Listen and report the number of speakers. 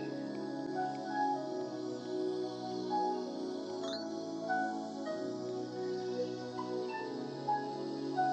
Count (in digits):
0